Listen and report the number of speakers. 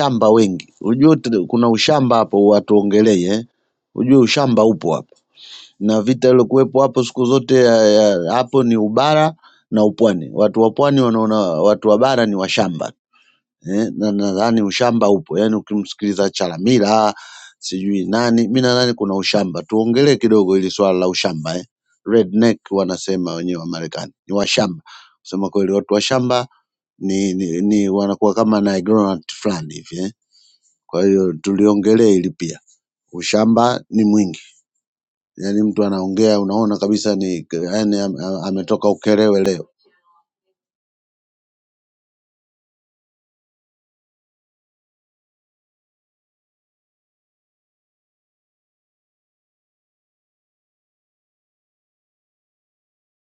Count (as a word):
one